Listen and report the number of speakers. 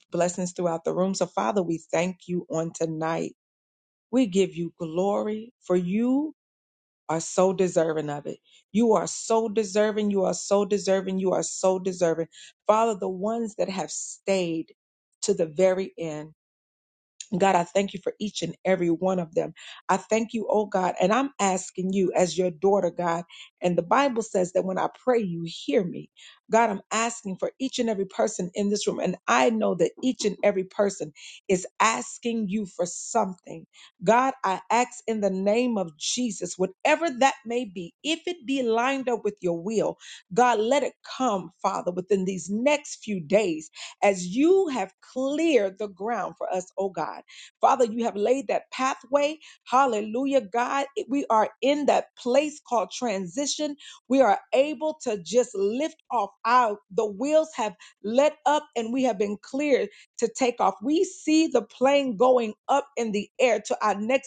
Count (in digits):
1